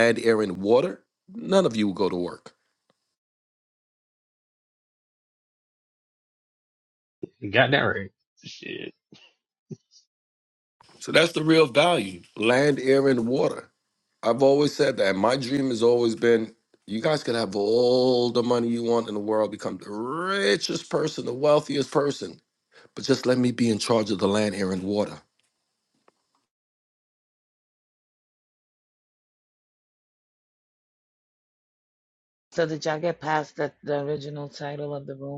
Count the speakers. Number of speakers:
3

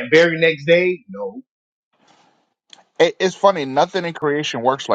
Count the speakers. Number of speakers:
2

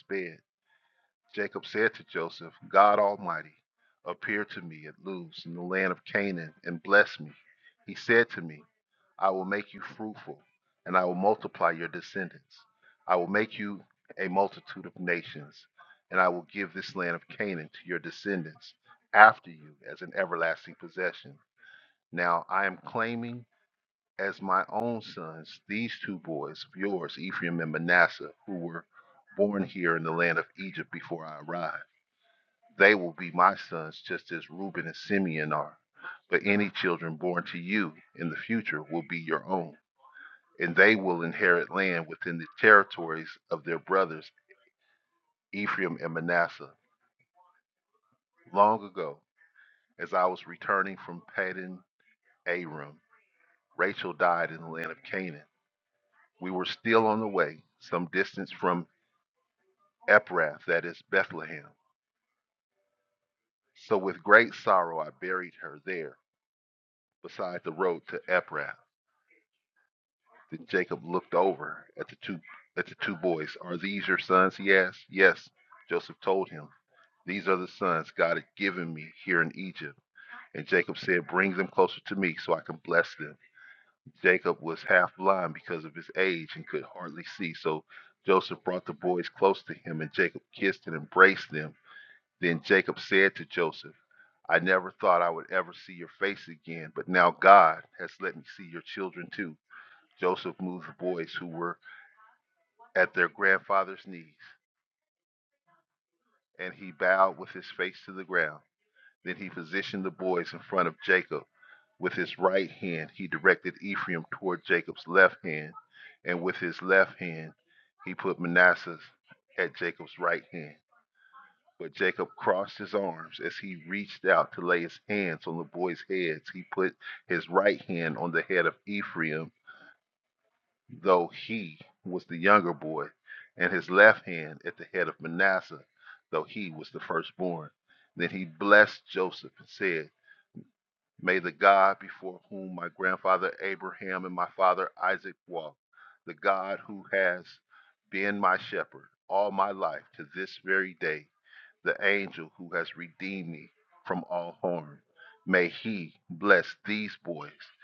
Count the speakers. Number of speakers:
1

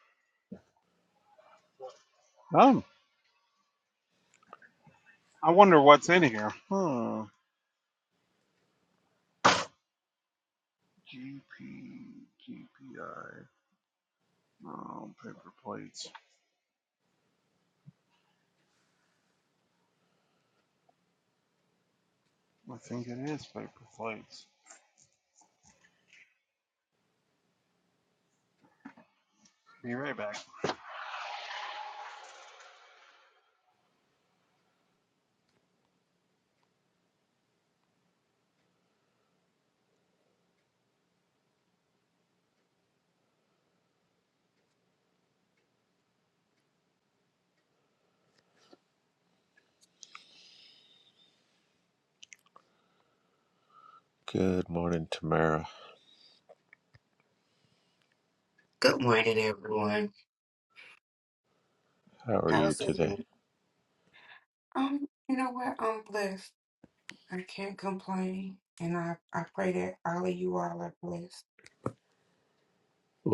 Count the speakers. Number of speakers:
3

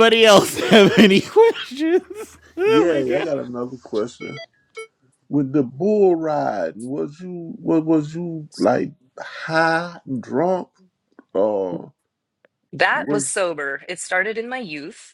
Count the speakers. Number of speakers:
3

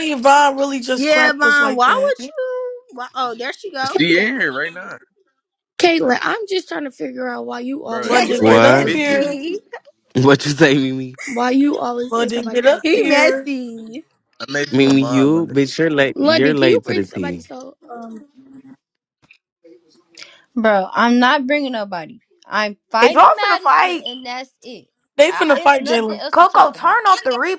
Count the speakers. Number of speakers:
7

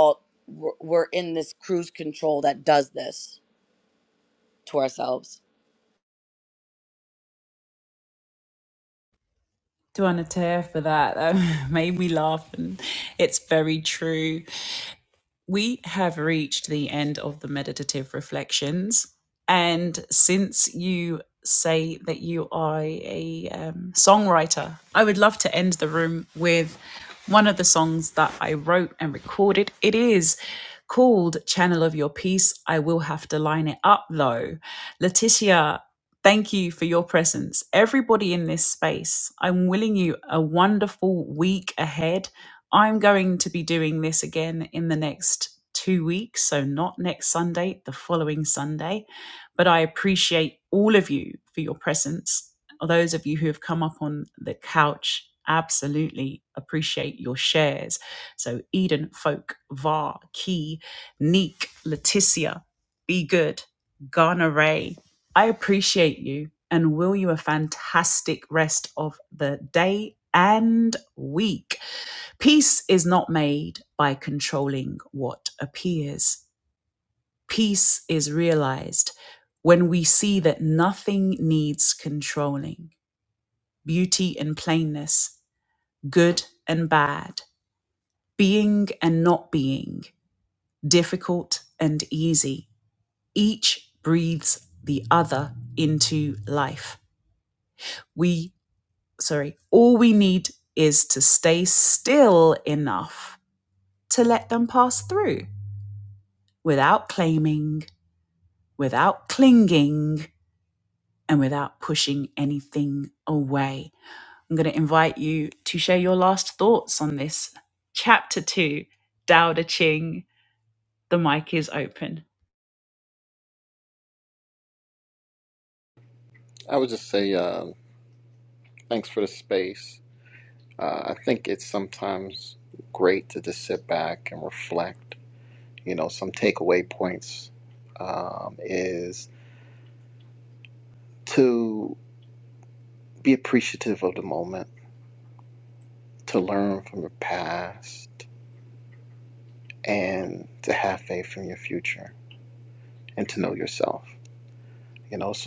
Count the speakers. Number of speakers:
3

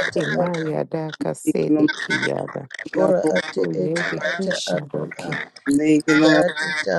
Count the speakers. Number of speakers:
3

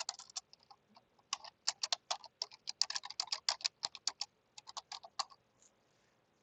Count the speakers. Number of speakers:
0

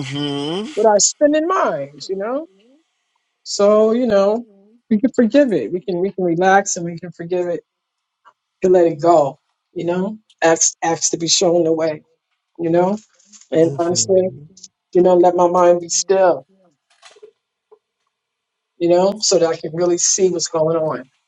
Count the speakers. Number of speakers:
2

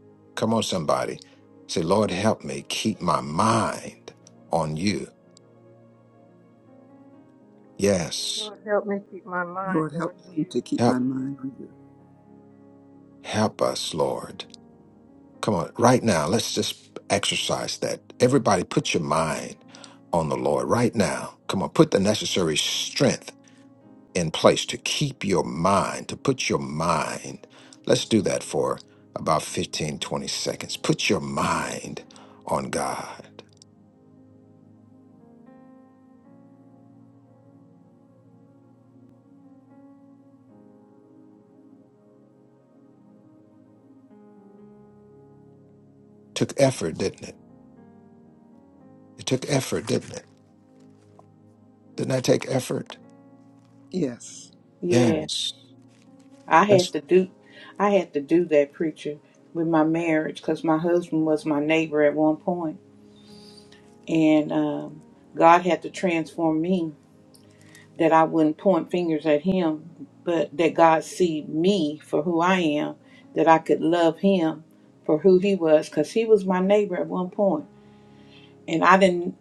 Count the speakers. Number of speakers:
4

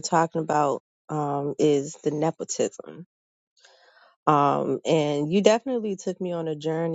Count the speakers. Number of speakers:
1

